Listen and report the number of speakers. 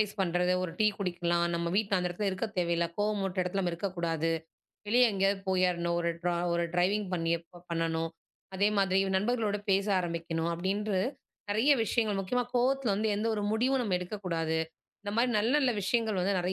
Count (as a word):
one